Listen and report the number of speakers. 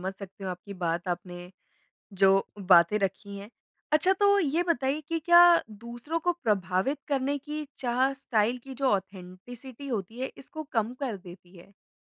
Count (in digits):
1